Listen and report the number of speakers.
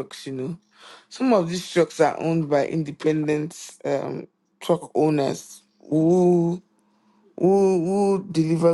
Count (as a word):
one